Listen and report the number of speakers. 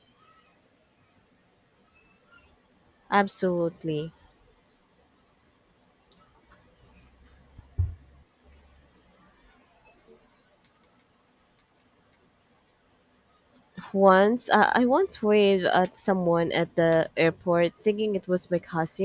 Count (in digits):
1